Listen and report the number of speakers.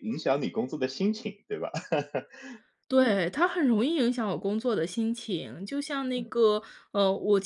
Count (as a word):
two